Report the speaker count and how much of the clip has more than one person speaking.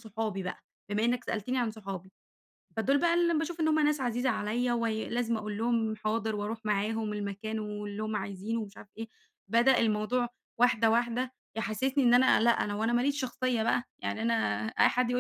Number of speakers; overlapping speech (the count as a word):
one, no overlap